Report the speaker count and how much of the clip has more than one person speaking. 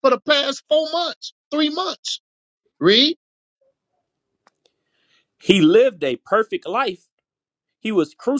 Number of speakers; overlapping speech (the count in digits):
2, no overlap